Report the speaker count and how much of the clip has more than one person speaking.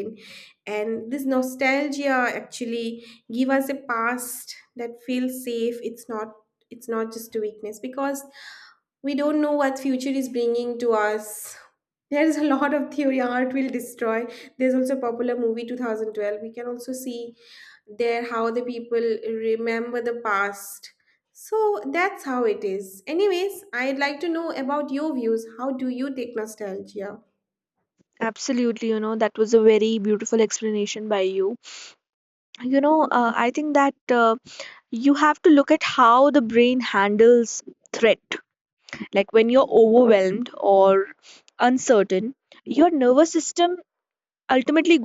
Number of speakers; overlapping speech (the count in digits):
2, no overlap